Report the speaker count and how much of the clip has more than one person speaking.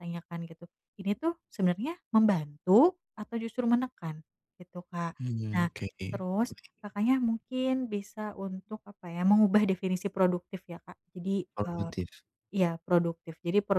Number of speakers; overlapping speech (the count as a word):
two, about 4%